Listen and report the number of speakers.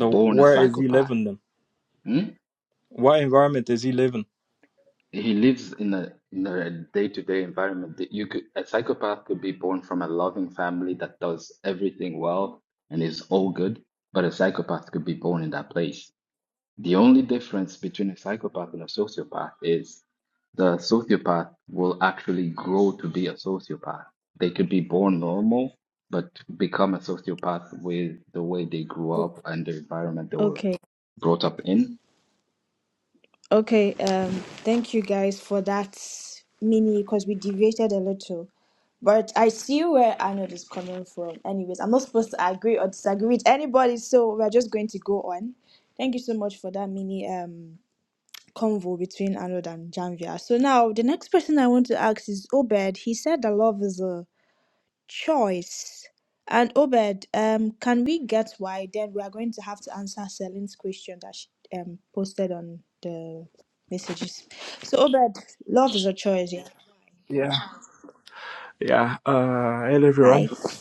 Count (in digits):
4